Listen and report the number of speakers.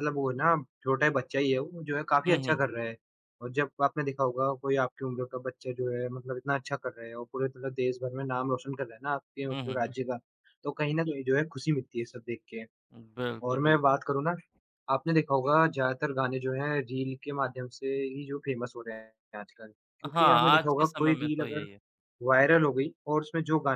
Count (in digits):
2